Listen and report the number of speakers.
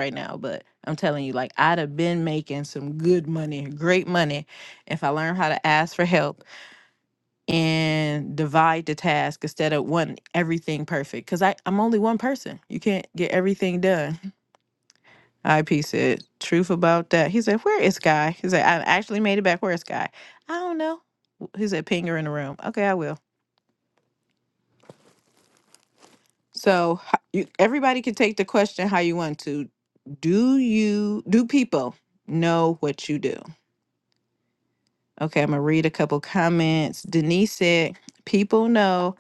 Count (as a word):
one